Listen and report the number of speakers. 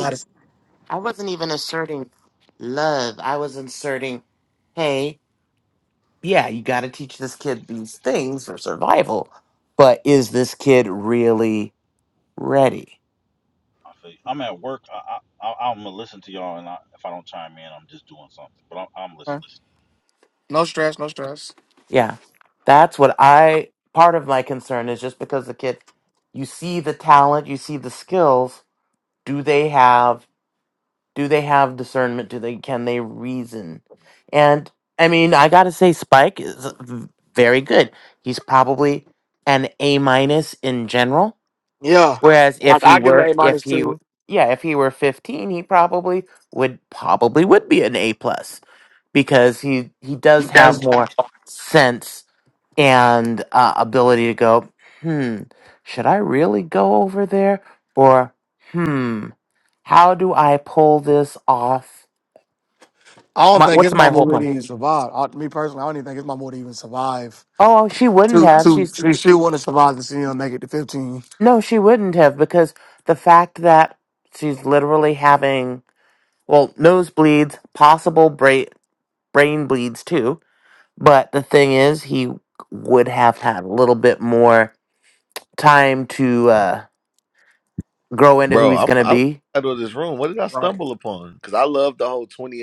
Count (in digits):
4